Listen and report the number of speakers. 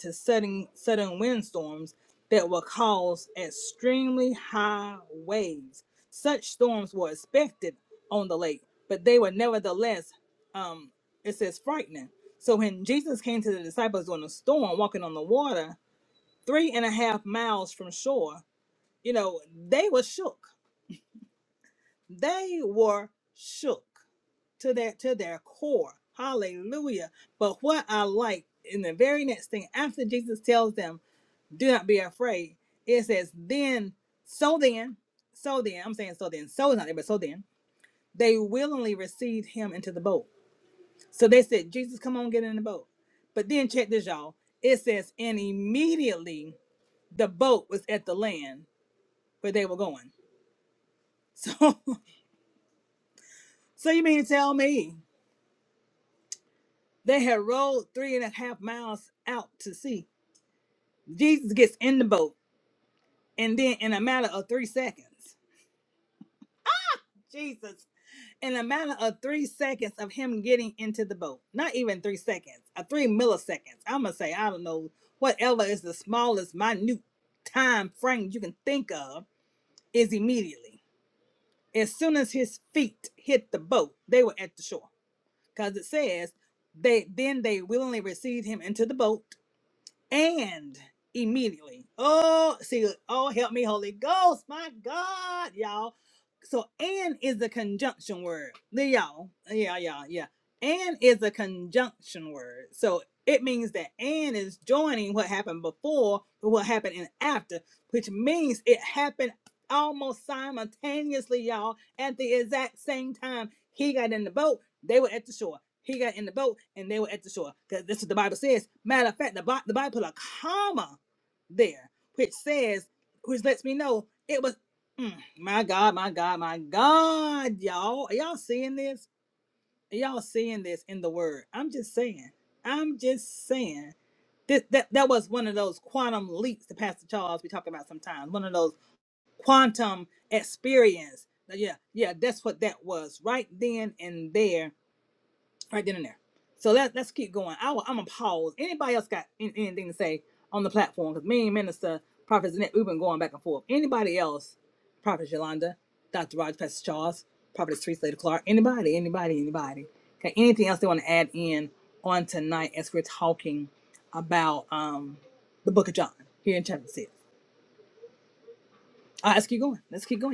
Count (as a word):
one